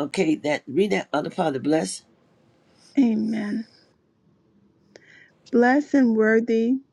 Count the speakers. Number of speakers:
two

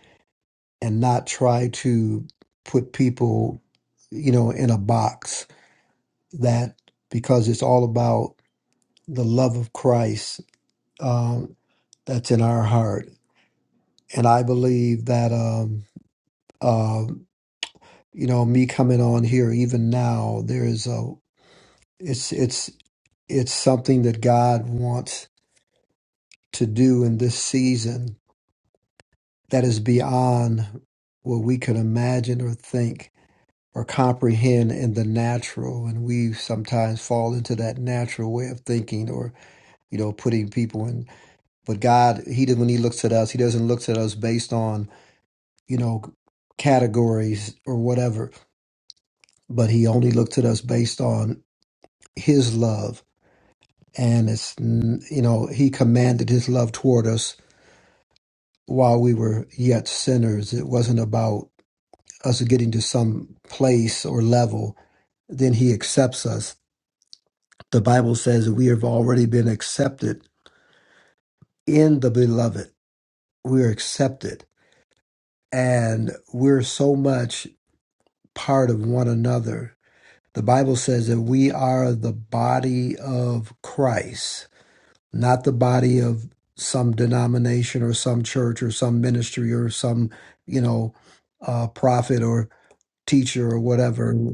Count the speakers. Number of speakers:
one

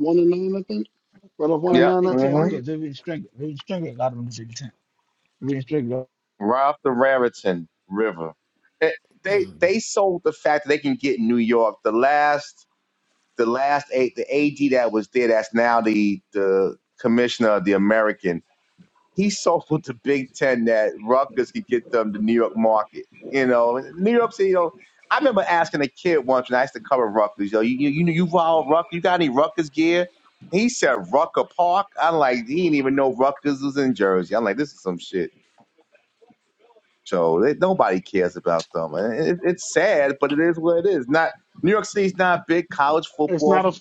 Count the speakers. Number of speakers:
three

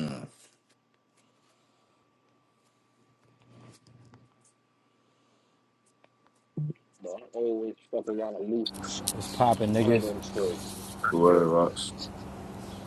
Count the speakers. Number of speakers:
three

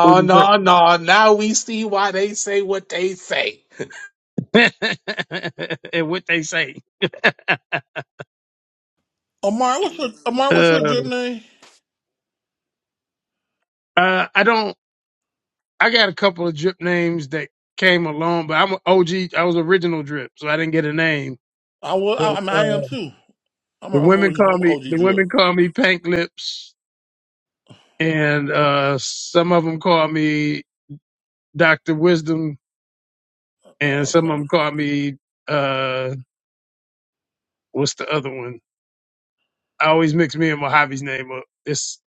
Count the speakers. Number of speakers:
three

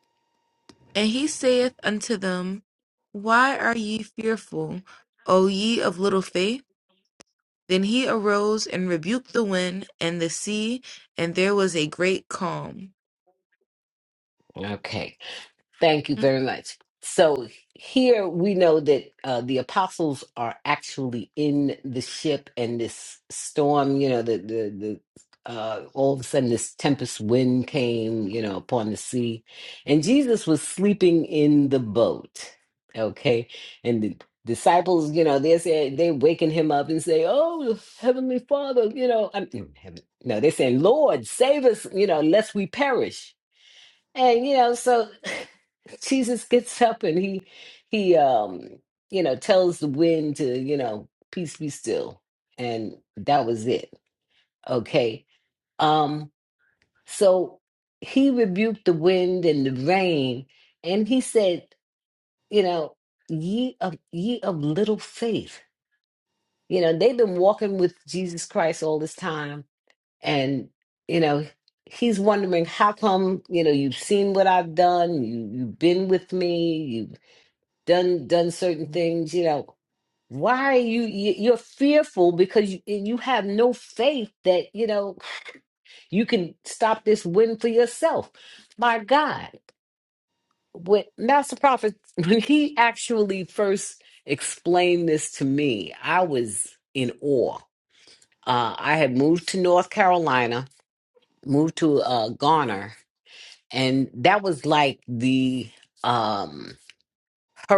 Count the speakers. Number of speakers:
two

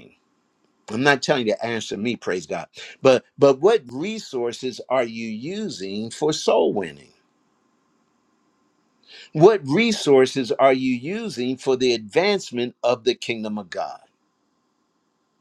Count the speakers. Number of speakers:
one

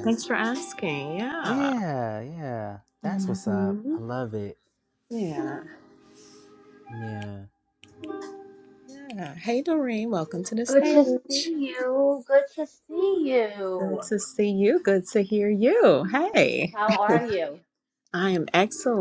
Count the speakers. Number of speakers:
three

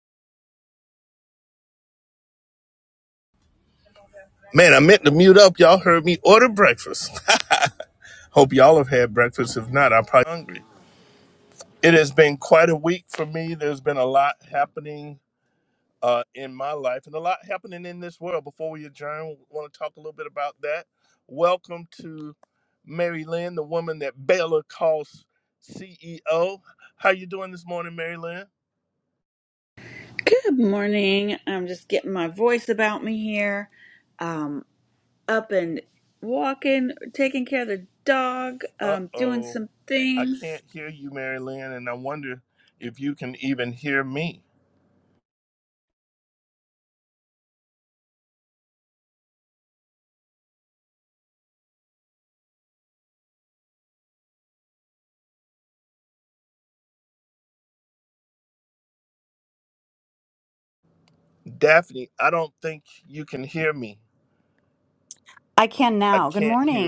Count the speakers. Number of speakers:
three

